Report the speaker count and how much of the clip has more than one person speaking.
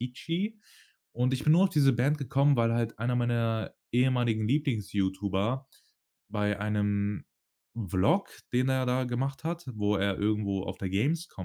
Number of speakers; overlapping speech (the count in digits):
1, no overlap